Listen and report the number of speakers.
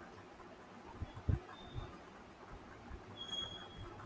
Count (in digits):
0